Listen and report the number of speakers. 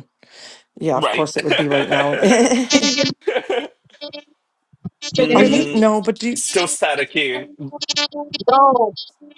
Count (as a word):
three